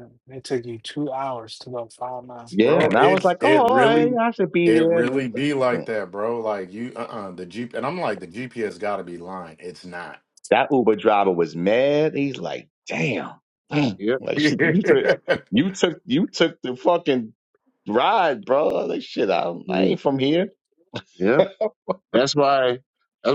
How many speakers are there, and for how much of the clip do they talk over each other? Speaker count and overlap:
4, about 12%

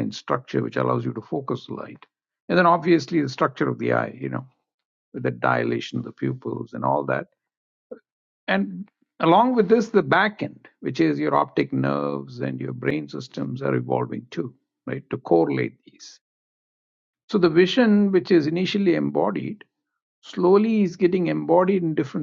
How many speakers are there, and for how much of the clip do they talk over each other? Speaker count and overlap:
1, no overlap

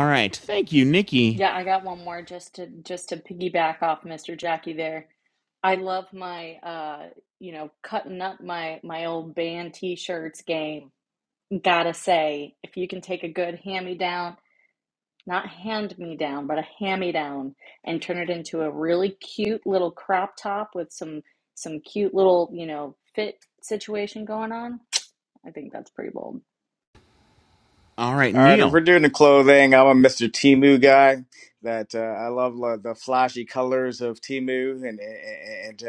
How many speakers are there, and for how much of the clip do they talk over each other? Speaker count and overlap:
3, about 1%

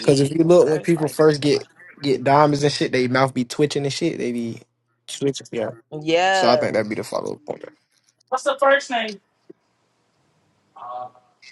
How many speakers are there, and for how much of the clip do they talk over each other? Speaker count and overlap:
3, about 17%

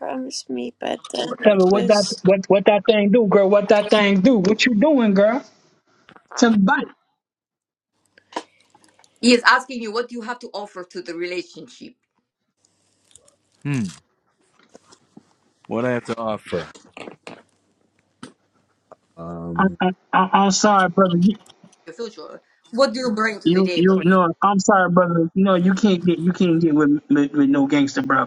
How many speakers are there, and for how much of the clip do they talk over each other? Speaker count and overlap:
4, about 6%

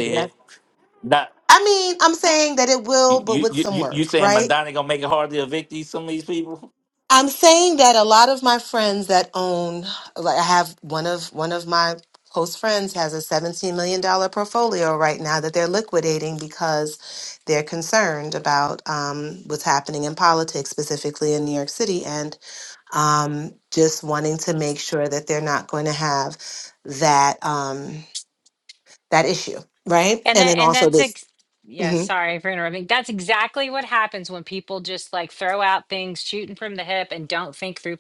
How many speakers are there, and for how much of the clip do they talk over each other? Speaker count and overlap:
3, about 7%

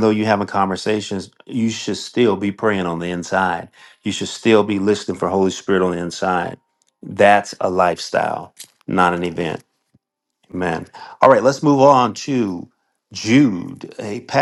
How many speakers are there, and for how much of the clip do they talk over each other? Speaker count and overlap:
1, no overlap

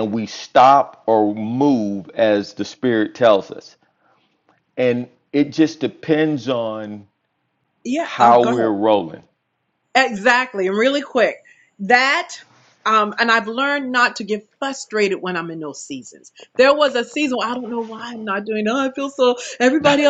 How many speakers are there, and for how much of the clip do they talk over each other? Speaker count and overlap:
2, about 4%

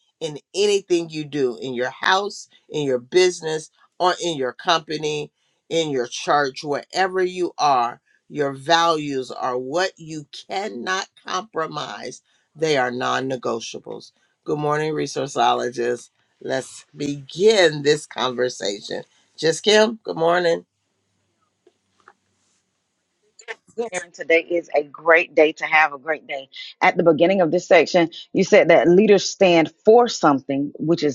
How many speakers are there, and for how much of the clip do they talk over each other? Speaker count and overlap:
2, no overlap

